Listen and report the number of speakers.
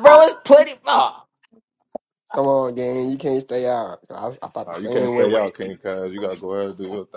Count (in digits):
3